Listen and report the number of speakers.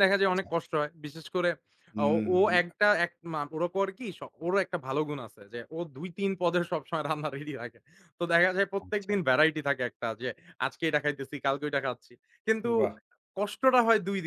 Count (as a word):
two